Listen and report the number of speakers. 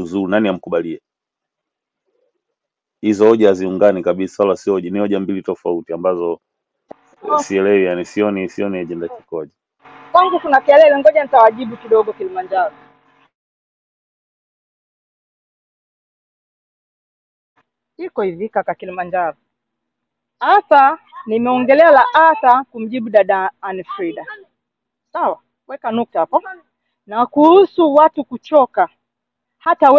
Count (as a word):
two